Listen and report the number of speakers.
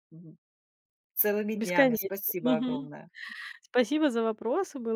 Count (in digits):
2